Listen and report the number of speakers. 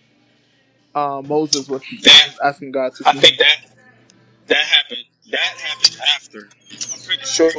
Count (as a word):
two